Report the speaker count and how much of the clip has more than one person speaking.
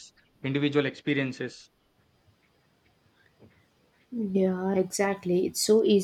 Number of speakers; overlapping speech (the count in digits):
2, no overlap